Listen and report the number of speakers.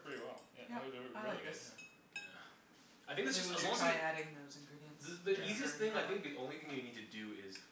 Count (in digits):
3